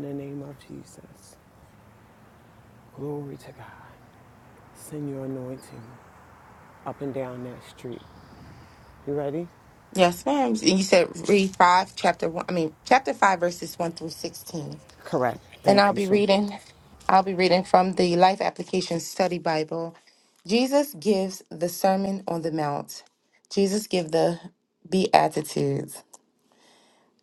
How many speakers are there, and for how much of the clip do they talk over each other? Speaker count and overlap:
2, about 2%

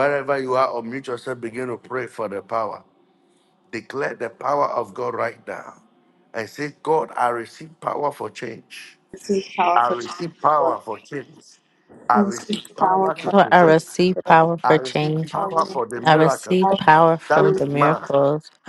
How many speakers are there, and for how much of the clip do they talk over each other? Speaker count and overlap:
3, about 28%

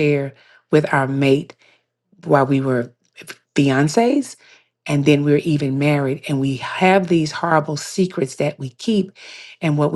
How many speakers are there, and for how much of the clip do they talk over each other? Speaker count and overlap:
1, no overlap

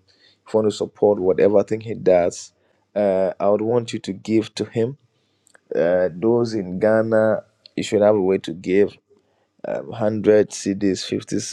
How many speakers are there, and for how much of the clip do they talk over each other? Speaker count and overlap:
1, no overlap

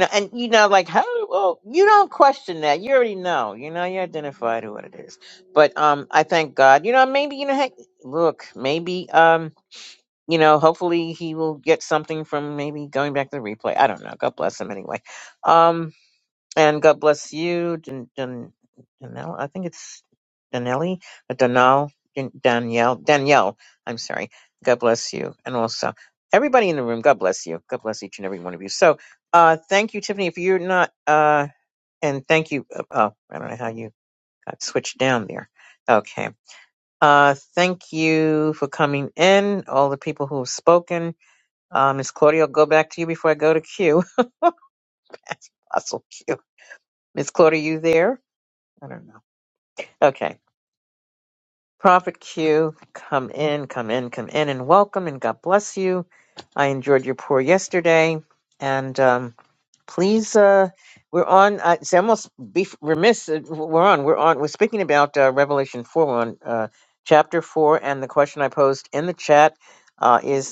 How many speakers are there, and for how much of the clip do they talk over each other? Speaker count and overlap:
1, no overlap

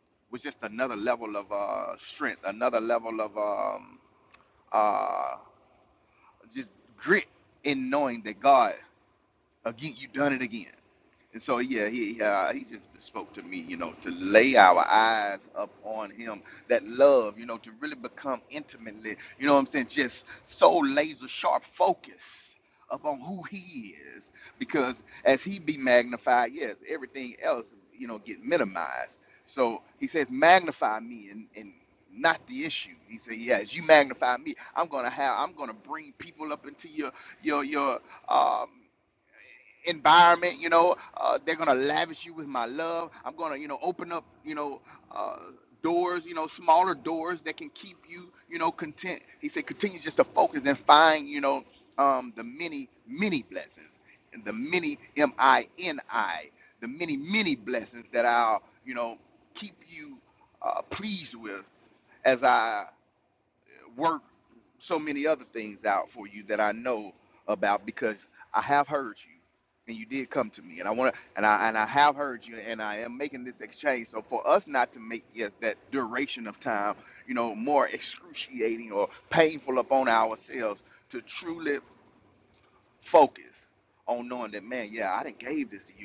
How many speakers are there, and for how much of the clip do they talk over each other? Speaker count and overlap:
1, no overlap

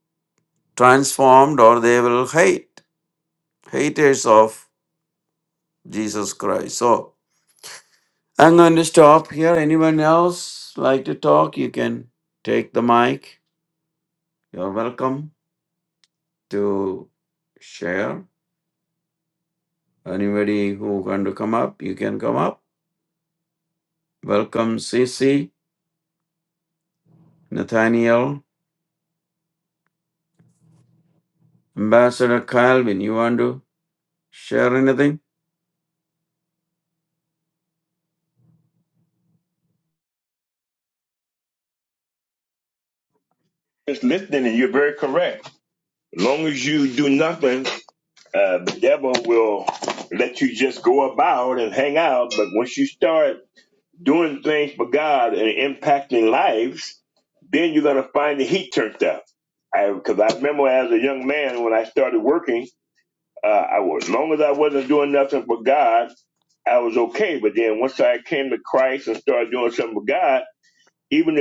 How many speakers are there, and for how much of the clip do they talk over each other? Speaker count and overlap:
2, no overlap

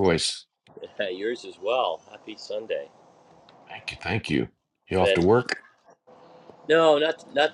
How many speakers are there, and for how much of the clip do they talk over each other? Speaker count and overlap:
2, about 3%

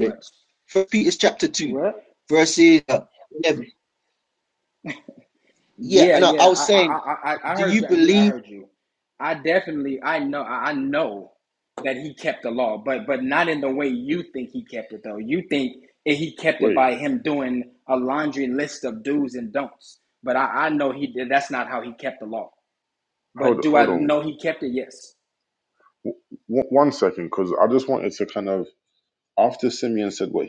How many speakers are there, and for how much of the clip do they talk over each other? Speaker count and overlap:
3, about 10%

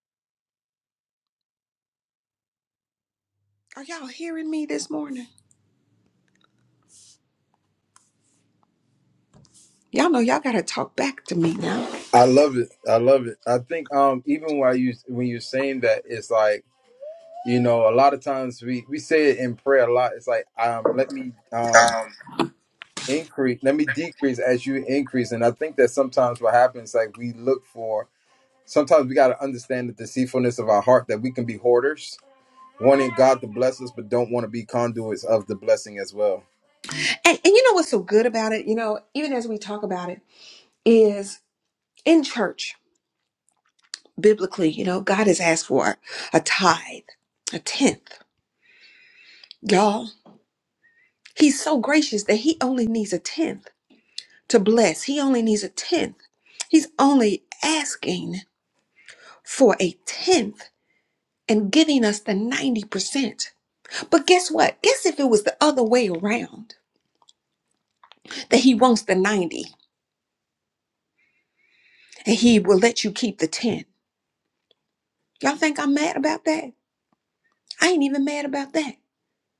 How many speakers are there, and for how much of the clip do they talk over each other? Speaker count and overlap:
2, no overlap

